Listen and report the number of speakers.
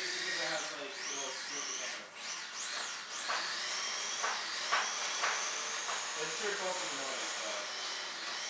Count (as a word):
one